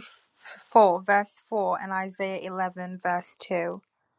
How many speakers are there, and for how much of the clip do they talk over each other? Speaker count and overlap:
one, no overlap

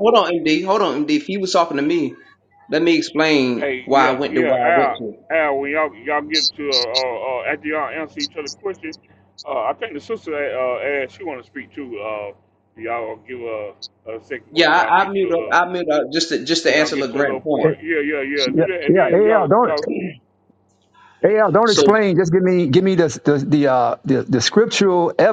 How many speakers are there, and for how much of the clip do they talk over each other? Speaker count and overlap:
three, about 21%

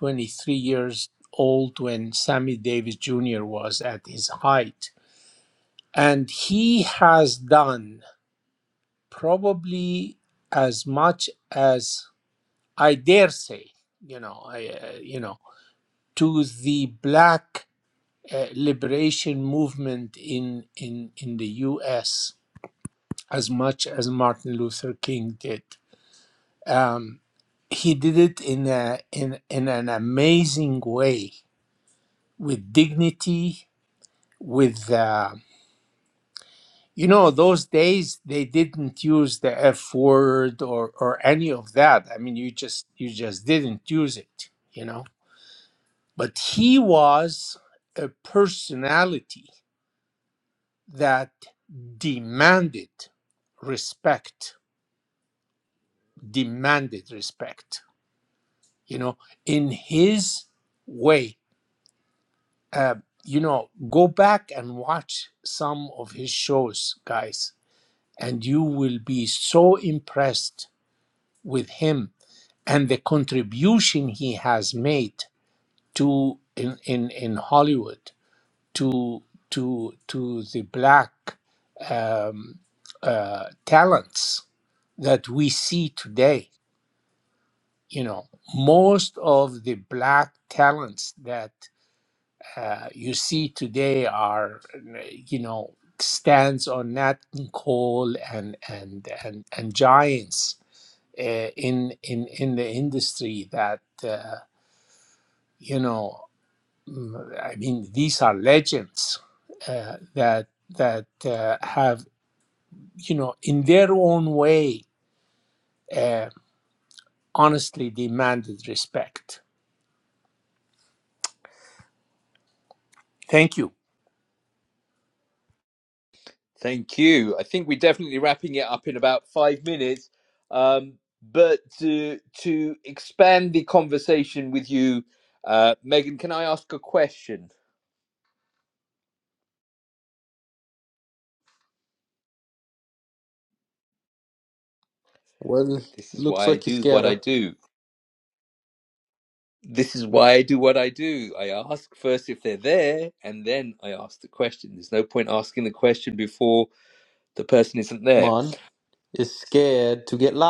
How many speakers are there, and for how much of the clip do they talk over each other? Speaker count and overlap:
three, about 1%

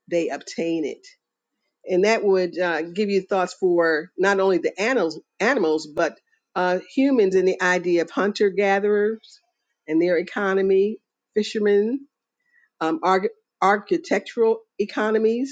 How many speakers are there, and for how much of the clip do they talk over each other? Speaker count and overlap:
one, no overlap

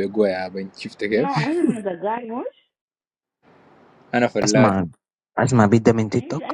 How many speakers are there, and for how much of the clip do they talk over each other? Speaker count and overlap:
three, about 17%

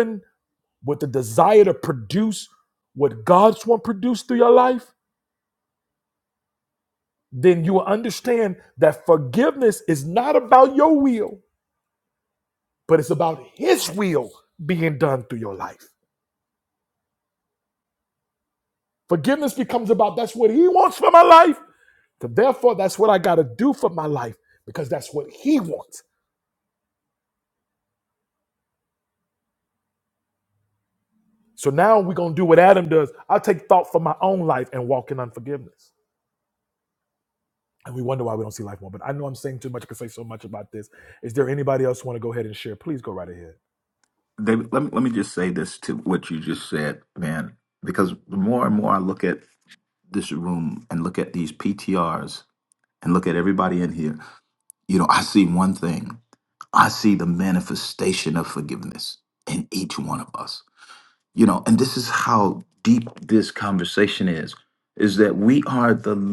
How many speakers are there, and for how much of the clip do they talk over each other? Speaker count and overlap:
two, no overlap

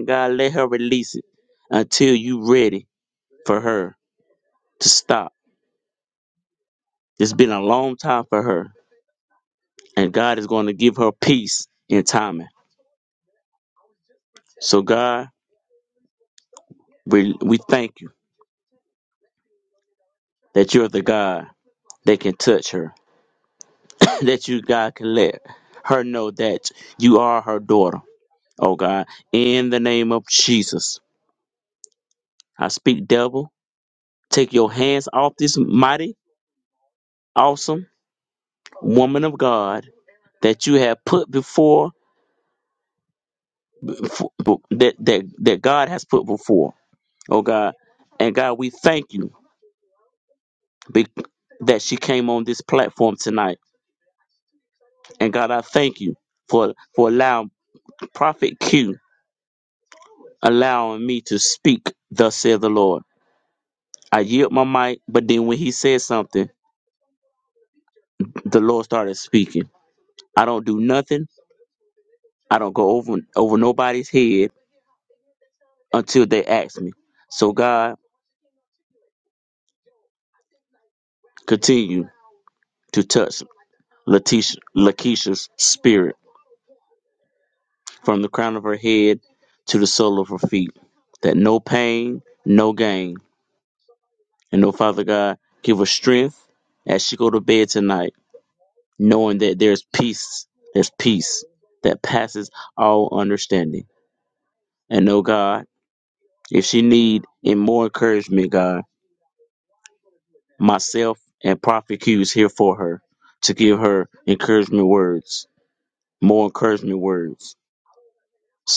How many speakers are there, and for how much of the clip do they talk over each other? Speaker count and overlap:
one, no overlap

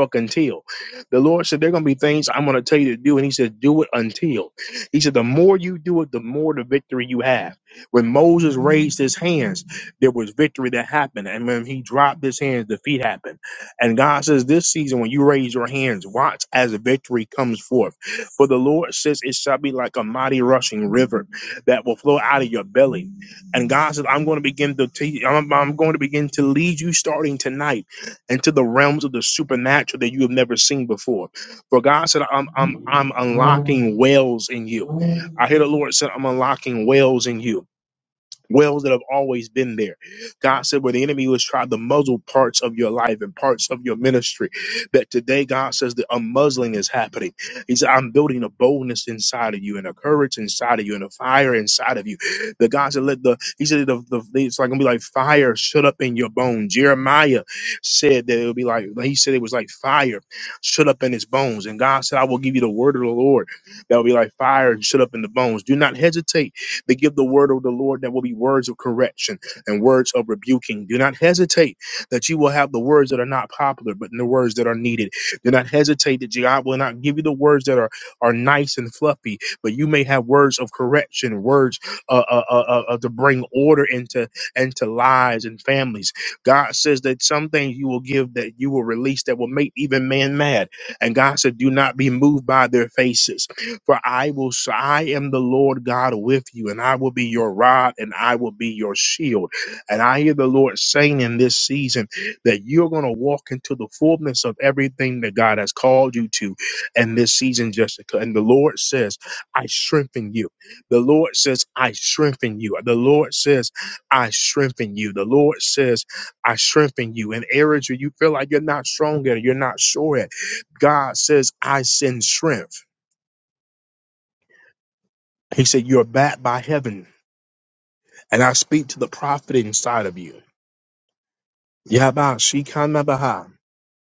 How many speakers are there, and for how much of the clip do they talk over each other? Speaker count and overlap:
one, no overlap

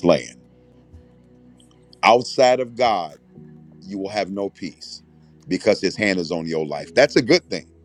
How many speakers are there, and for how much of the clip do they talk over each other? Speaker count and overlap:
one, no overlap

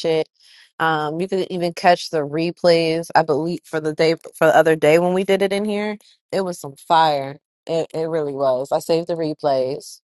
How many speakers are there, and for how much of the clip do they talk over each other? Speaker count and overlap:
one, no overlap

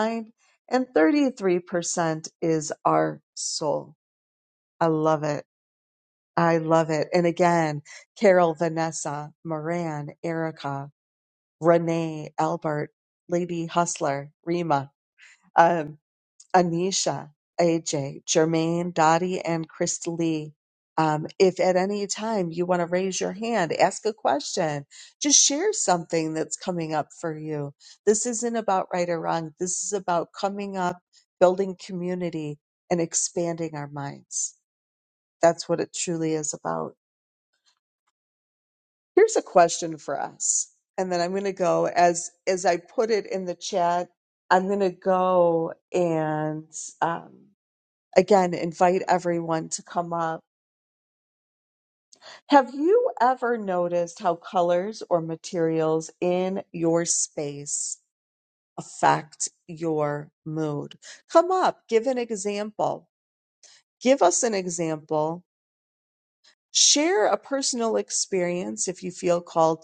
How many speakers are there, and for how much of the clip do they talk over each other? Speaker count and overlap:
one, no overlap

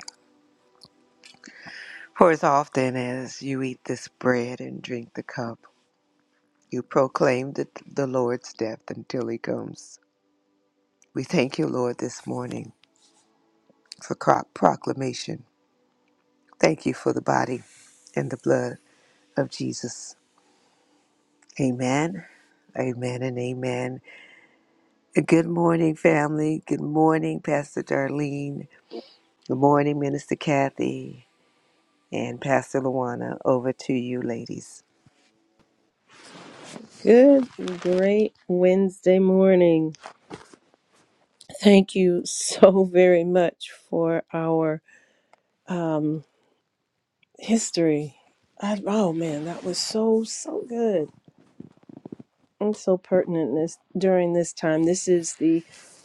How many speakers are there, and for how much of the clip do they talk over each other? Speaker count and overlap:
two, no overlap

